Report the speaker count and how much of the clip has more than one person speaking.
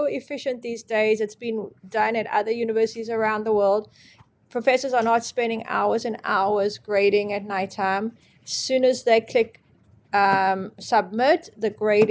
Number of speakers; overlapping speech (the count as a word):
one, no overlap